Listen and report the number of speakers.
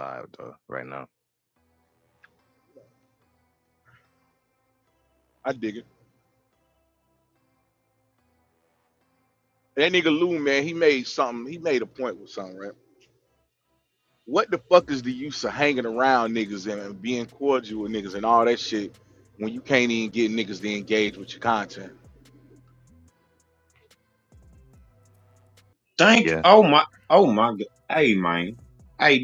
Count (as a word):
three